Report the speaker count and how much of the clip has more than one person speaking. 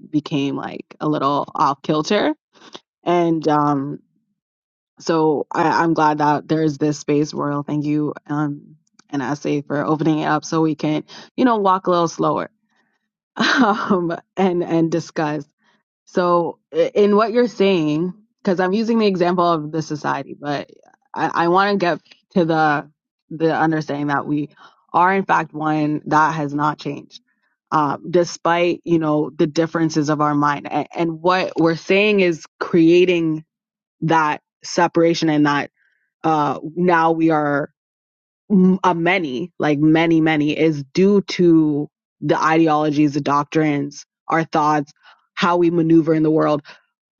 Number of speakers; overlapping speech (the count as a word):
one, no overlap